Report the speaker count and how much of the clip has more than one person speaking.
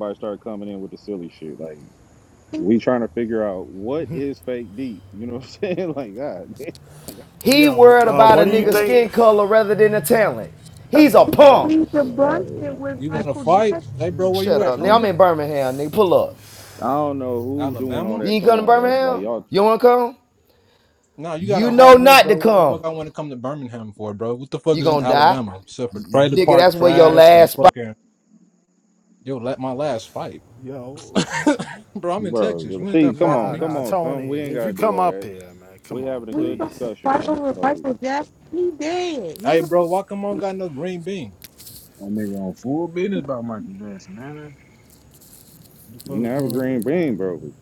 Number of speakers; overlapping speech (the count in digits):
6, about 33%